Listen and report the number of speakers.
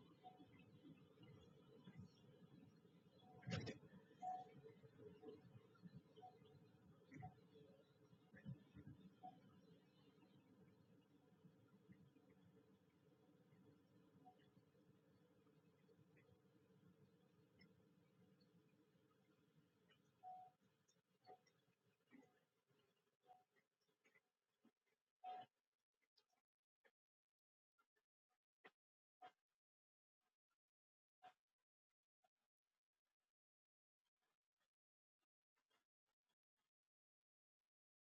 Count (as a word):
zero